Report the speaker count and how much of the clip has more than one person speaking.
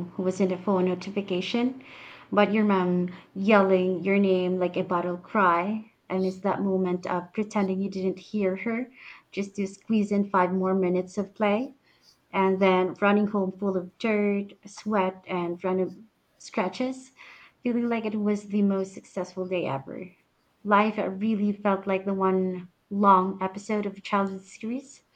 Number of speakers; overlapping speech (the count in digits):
1, no overlap